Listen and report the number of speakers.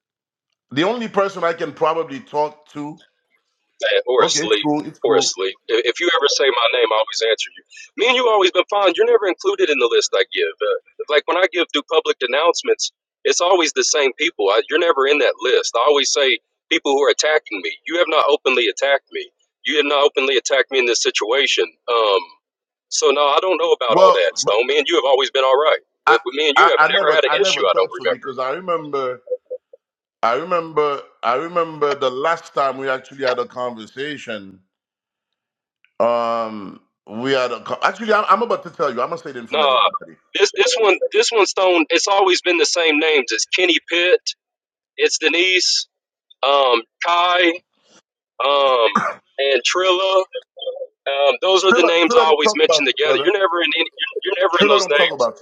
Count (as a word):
two